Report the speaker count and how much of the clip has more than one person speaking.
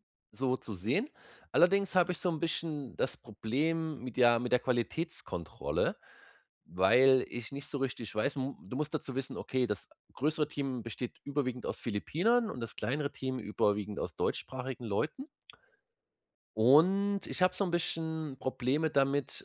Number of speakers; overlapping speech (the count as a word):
one, no overlap